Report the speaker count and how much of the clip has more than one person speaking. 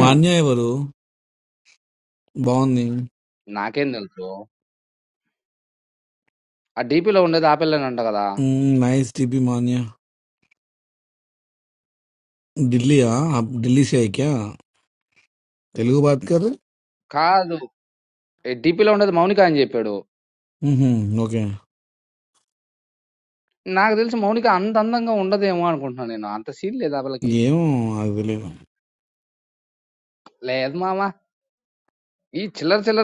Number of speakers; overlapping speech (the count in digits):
2, no overlap